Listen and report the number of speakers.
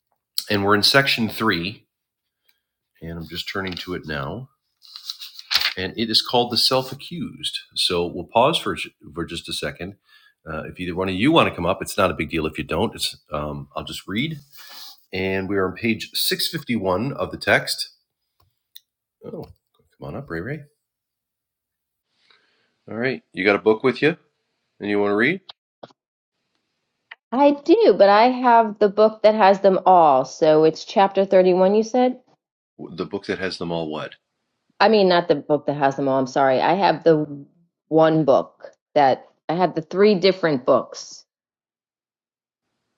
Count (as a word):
two